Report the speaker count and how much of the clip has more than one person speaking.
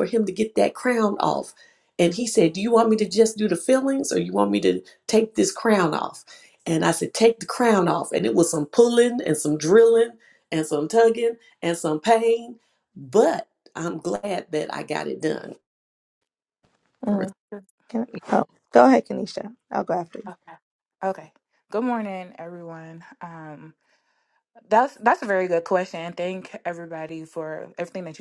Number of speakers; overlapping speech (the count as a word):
three, no overlap